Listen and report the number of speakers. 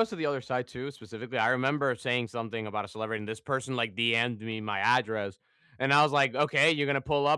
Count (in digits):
1